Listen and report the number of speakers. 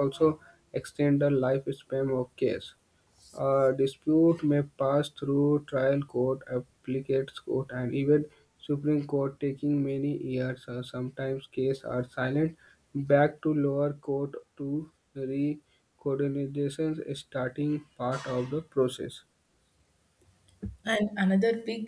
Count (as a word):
two